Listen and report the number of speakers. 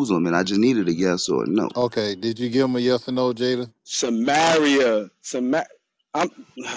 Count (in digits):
3